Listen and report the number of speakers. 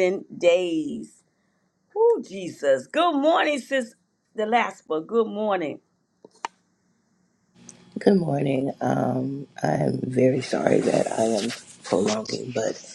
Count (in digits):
2